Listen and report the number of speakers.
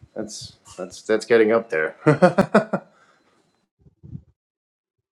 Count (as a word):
one